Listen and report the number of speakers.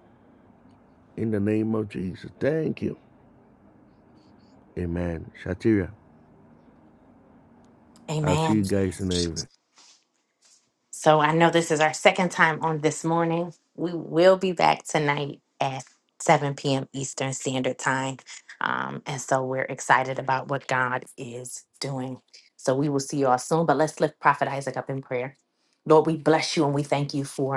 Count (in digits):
2